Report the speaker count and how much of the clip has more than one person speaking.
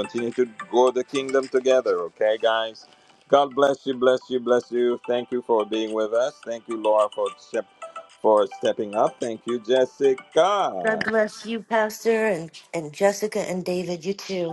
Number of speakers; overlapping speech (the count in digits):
2, about 2%